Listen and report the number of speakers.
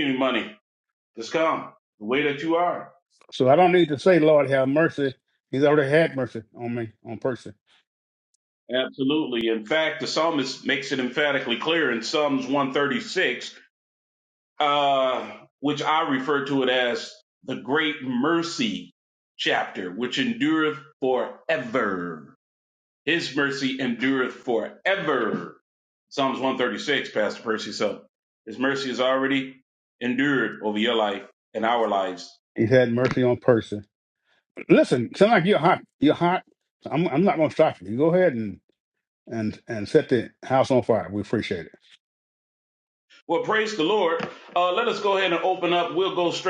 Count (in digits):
2